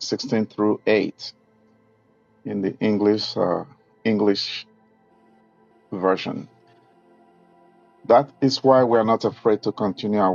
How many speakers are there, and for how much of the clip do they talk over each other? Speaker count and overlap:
one, no overlap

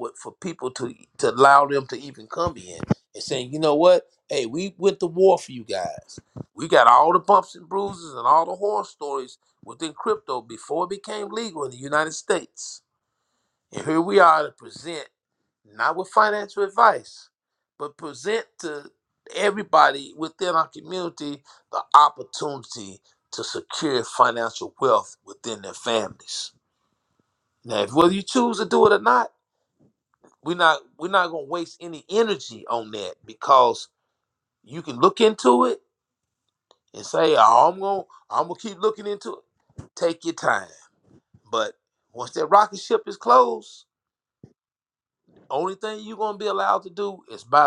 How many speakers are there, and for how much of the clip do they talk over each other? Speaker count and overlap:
one, no overlap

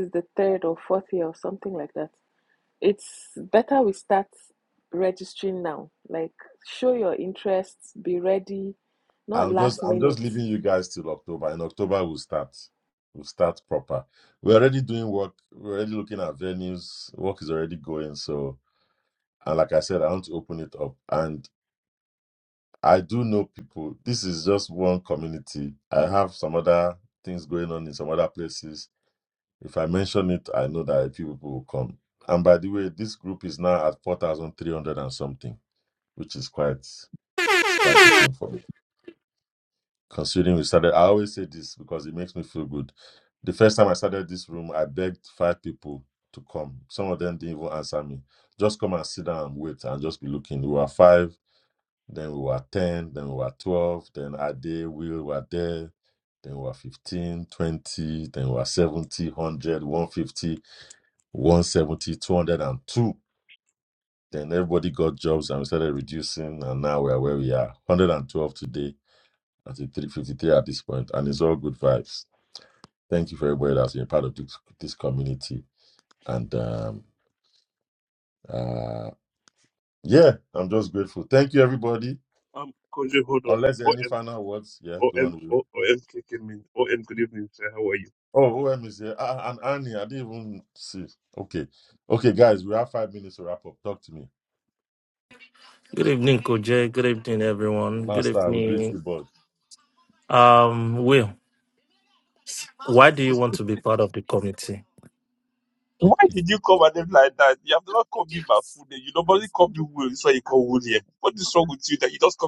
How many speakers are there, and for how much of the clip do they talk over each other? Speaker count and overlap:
four, about 3%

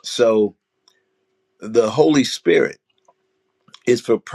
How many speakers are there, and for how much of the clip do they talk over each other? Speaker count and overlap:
one, no overlap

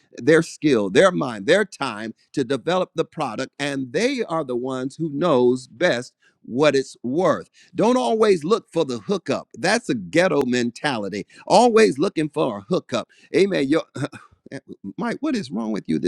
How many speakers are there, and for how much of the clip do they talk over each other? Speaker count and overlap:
one, no overlap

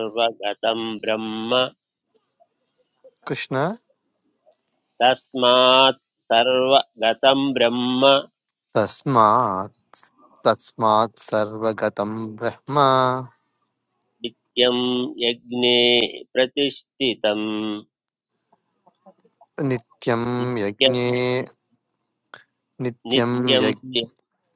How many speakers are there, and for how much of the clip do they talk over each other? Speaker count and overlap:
two, about 5%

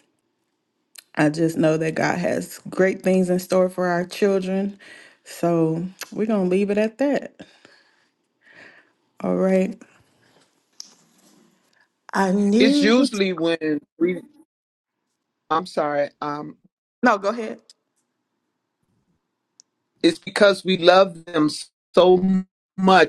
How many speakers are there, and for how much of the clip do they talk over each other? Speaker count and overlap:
two, about 2%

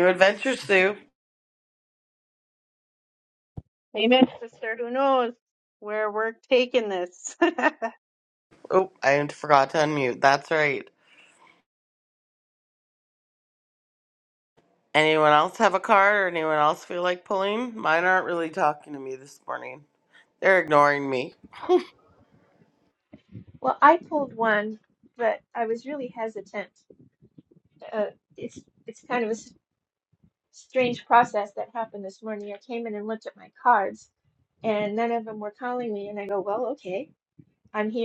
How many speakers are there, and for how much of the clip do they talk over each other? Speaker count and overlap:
three, no overlap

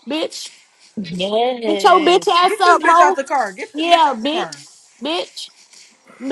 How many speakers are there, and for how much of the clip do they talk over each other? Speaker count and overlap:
three, about 28%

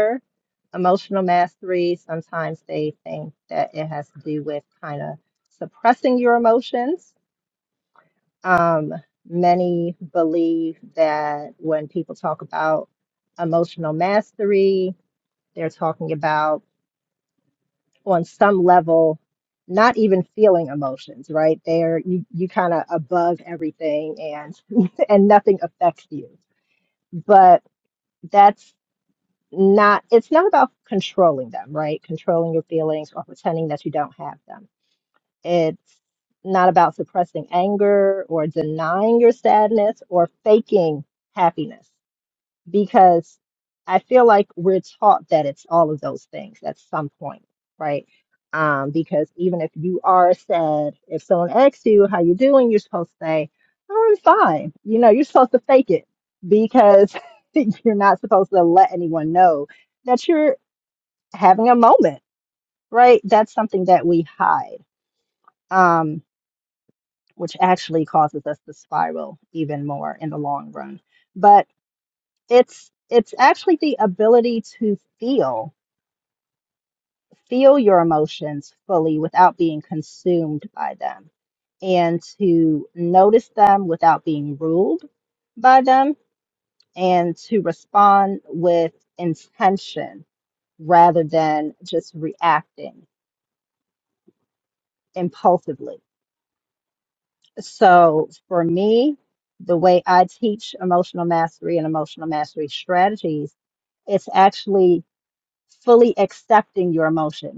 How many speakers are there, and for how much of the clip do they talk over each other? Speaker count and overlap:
one, no overlap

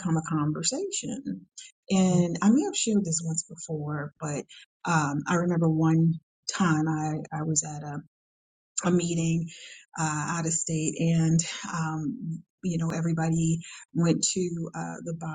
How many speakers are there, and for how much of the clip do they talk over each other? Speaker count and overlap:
one, no overlap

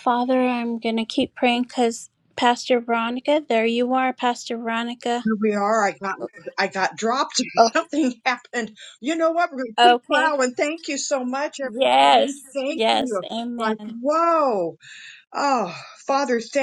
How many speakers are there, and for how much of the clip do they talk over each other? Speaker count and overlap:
two, about 14%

